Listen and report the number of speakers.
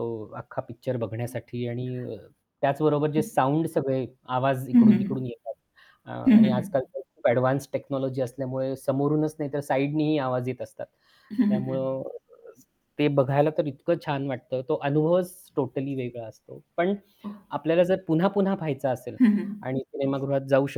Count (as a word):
two